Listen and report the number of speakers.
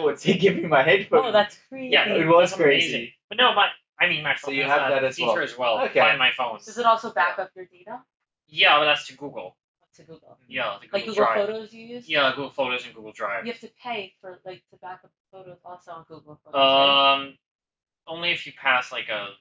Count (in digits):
3